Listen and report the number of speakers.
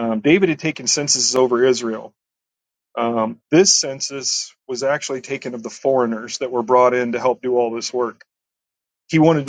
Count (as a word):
one